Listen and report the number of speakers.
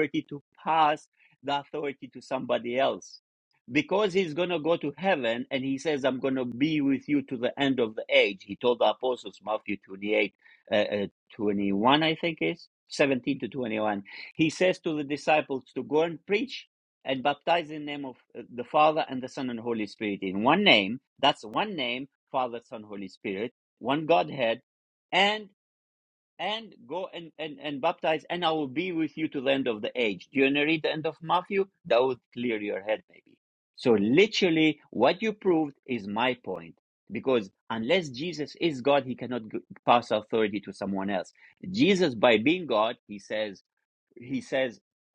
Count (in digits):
1